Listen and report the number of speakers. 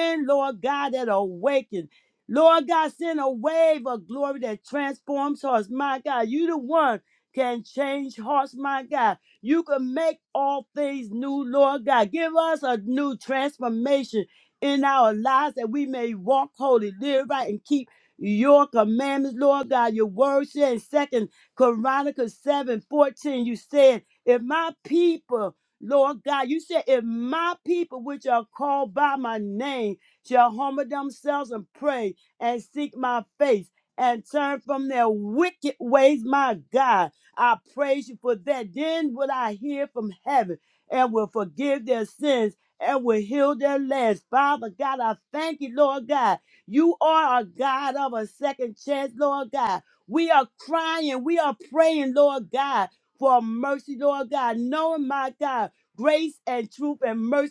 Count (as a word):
one